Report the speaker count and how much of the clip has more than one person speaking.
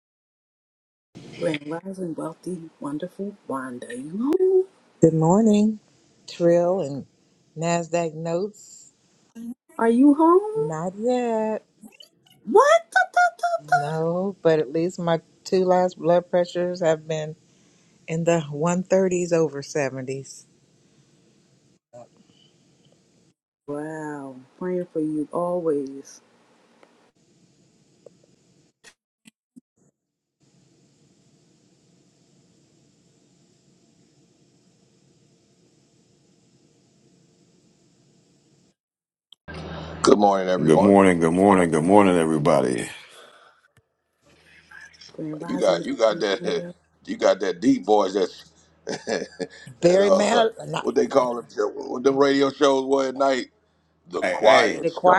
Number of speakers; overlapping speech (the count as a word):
four, about 6%